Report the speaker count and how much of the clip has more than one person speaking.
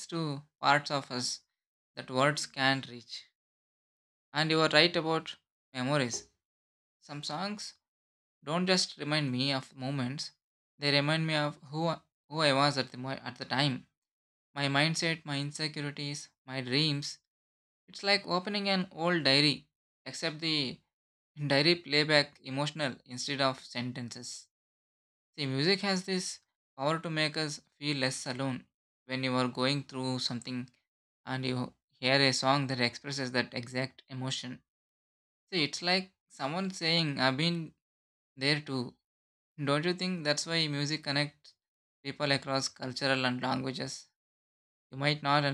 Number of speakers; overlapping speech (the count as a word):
one, no overlap